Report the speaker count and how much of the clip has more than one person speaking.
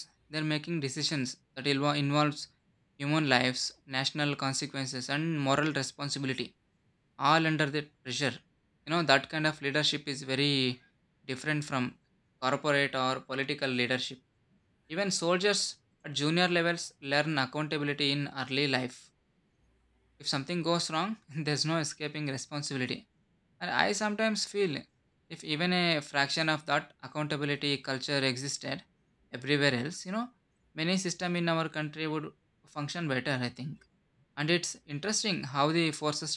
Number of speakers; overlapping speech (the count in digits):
1, no overlap